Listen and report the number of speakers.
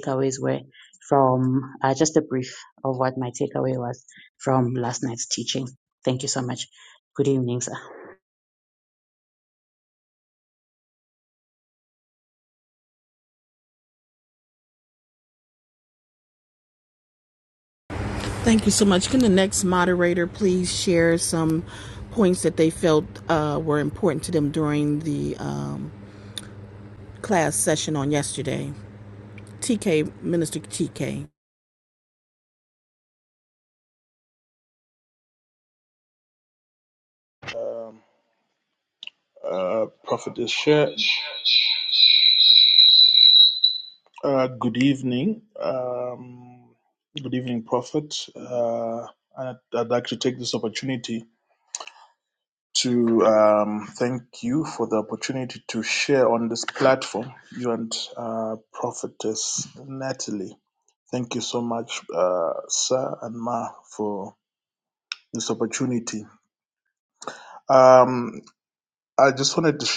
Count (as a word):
three